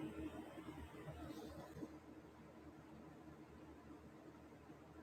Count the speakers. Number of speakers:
0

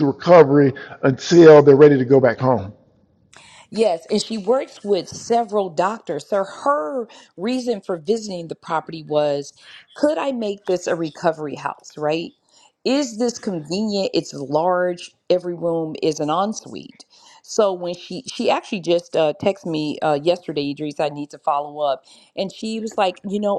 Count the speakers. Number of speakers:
2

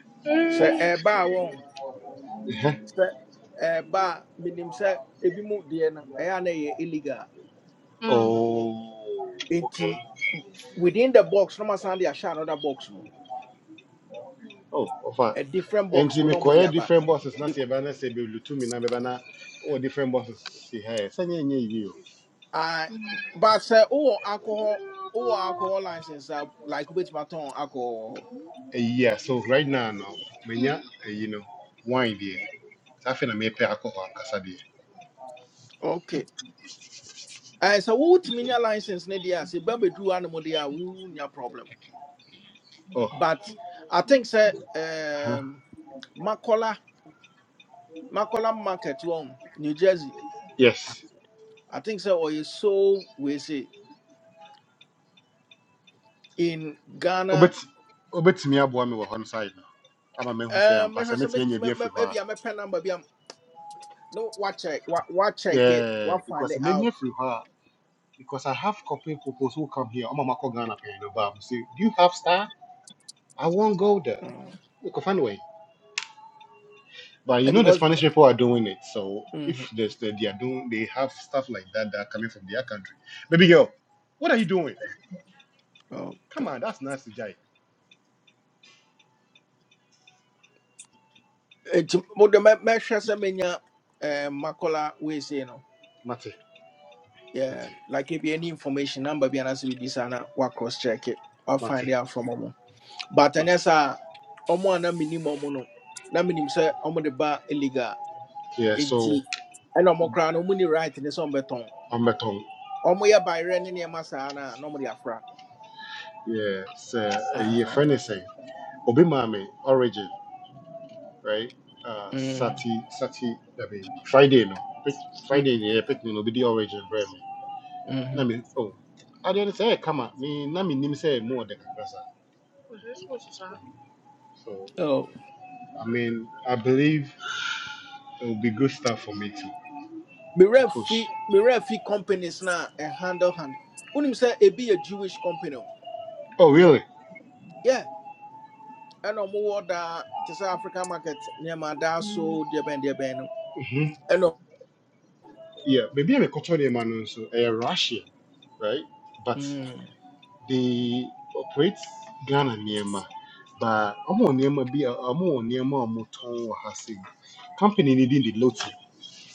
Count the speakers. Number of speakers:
3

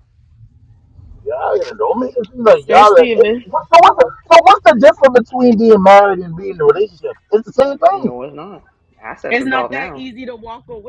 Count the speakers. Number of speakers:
3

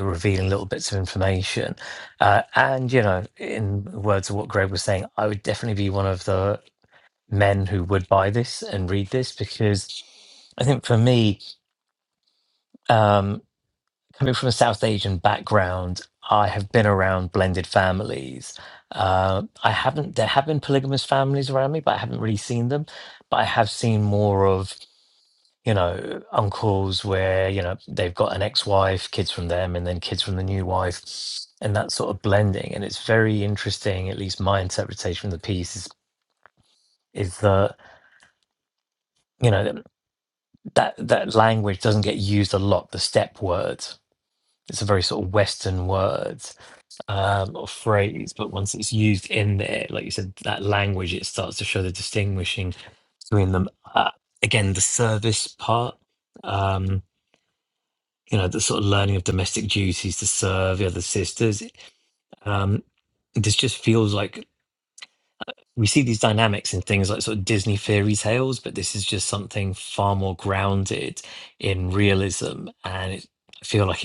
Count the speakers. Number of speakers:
1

